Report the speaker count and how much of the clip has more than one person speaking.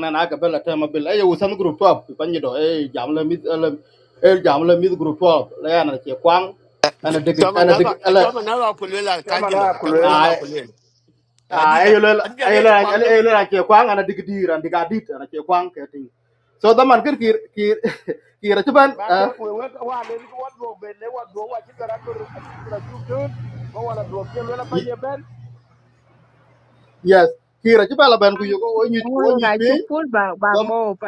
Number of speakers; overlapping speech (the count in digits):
4, about 17%